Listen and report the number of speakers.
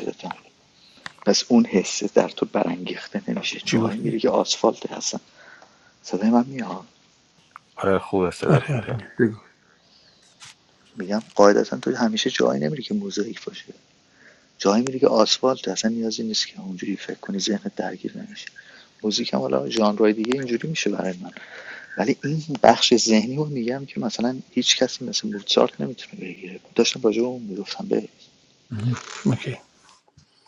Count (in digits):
3